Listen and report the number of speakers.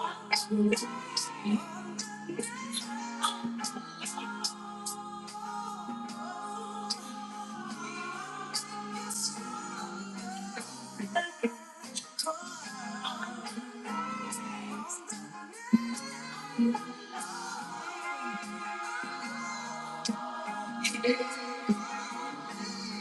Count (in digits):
0